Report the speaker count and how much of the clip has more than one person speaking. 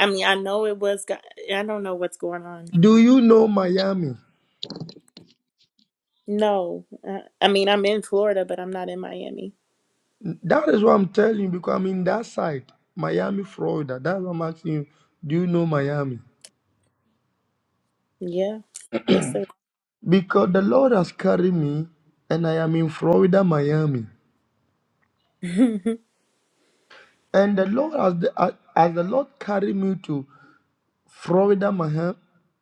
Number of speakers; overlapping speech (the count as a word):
two, no overlap